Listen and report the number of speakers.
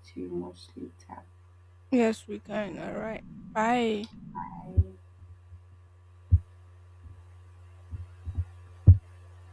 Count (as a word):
two